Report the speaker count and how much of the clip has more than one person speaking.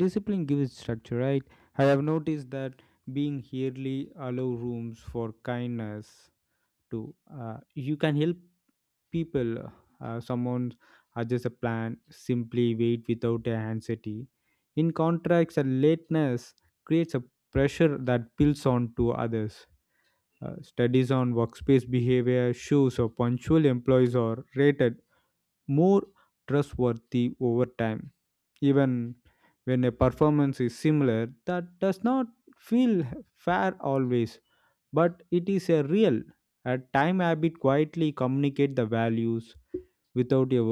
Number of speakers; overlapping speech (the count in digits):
1, no overlap